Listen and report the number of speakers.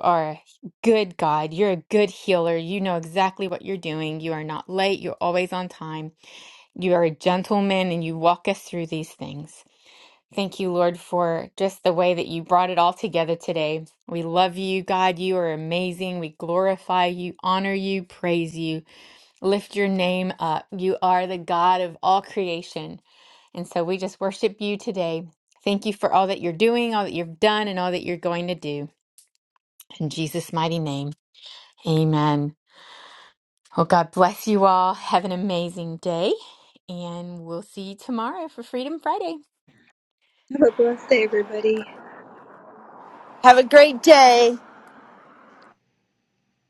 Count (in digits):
3